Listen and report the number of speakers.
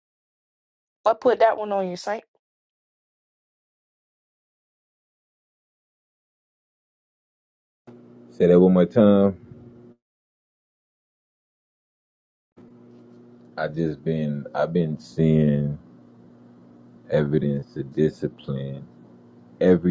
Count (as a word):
two